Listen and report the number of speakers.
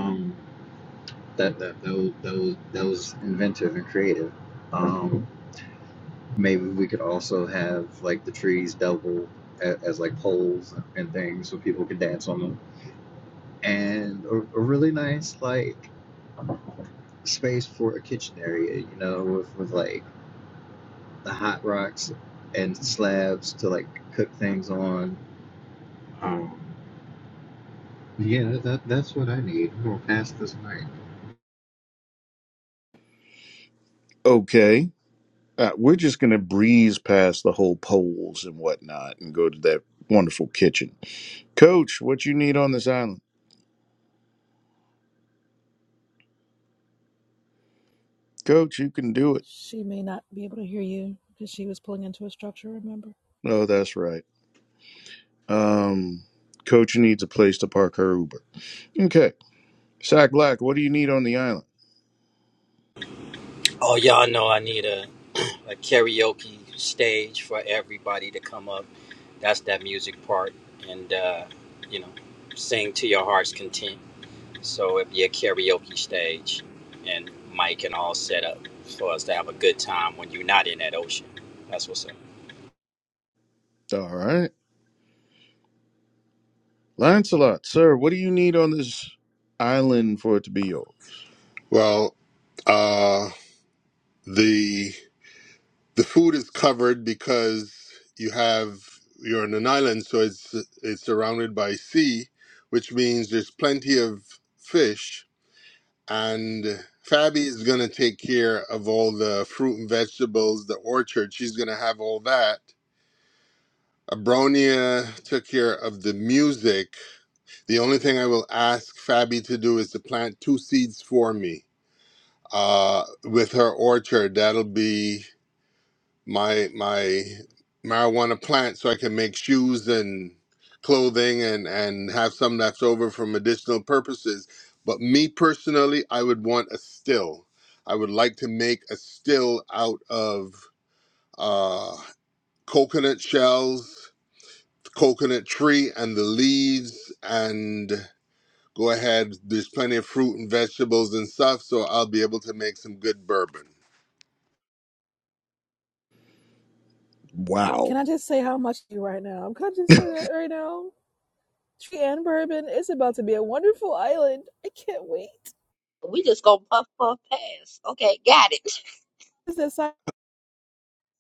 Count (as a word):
six